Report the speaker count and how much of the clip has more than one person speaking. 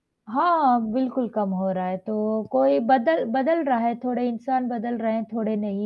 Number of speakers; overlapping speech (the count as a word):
one, no overlap